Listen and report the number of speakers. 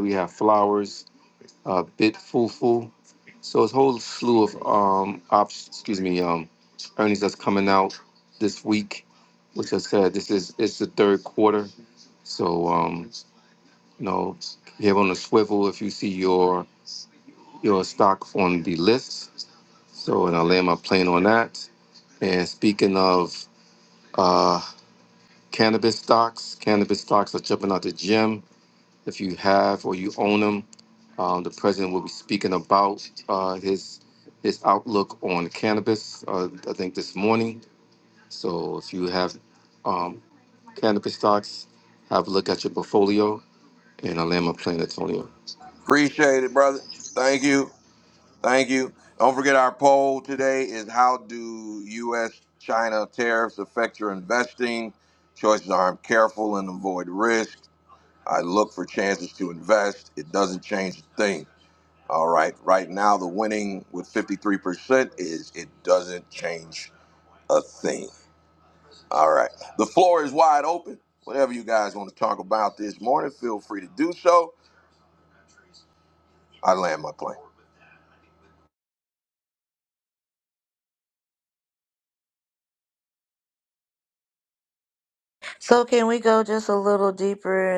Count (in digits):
3